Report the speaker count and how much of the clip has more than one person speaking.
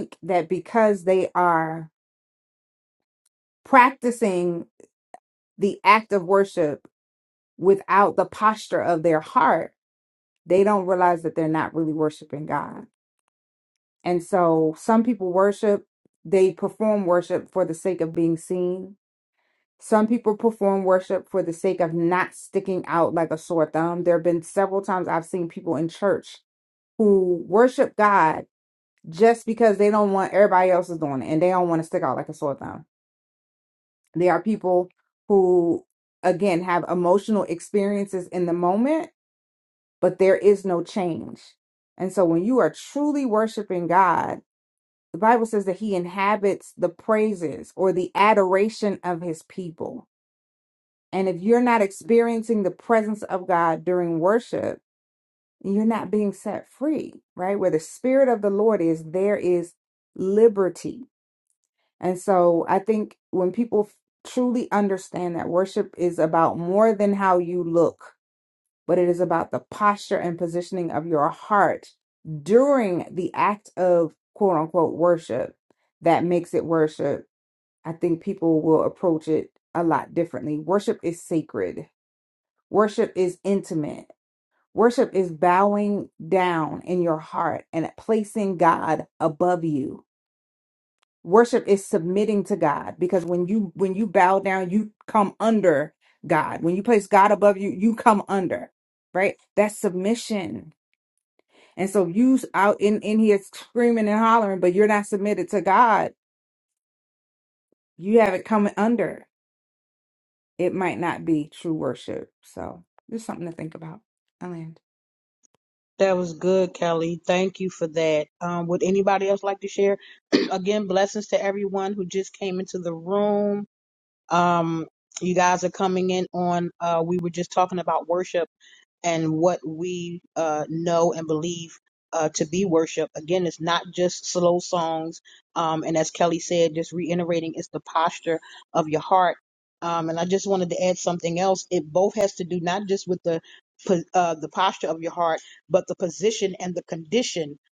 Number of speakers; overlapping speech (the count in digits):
2, no overlap